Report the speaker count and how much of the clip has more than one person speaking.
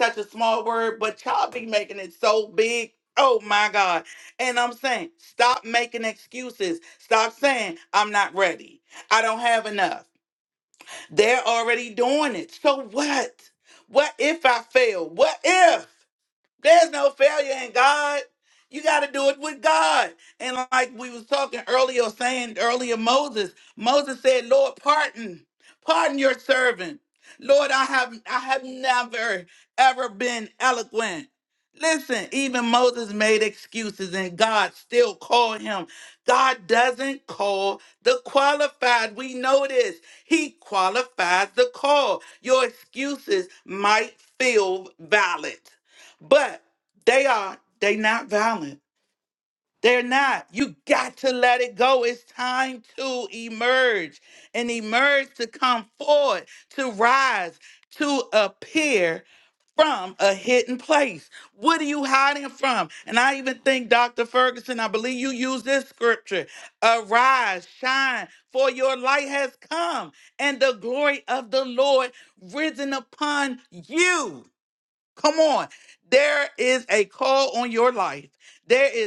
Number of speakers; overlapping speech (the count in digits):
1, no overlap